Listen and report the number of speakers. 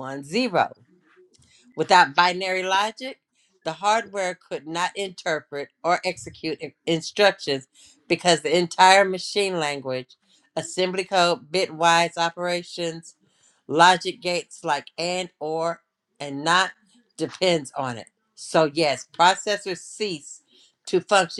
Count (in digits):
1